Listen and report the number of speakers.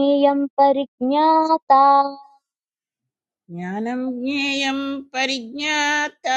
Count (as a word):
two